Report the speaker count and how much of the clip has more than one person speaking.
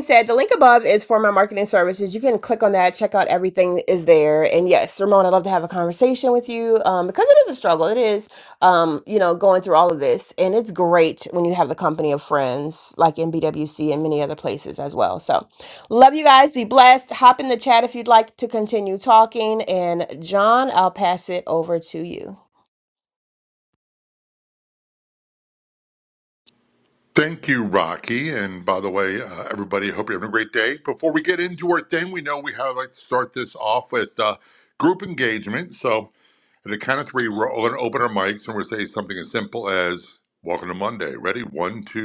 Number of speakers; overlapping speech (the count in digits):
2, no overlap